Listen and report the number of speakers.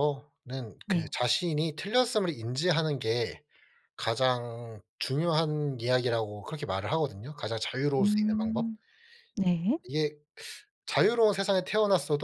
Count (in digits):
2